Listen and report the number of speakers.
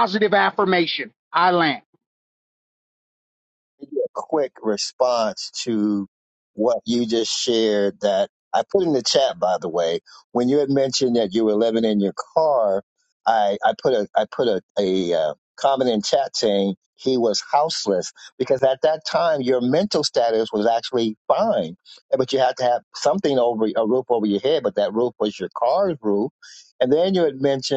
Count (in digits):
2